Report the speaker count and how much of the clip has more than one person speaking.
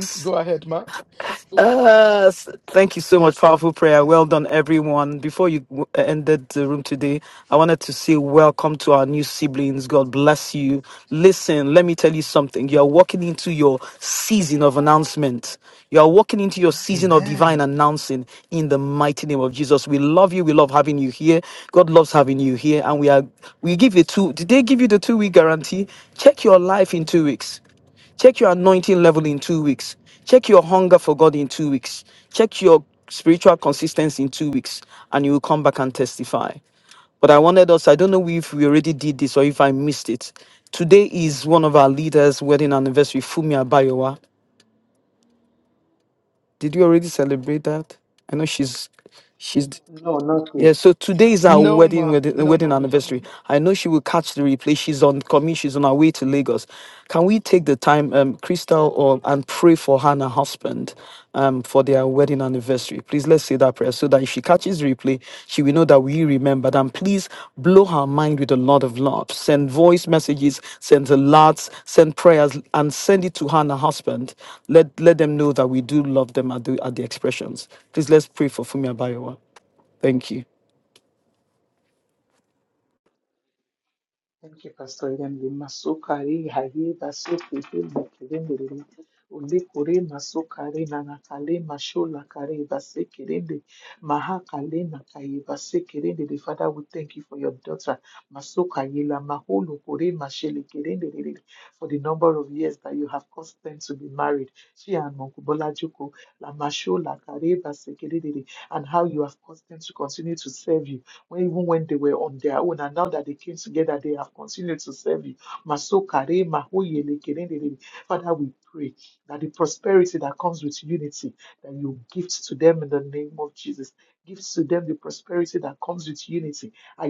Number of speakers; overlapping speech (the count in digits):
3, about 2%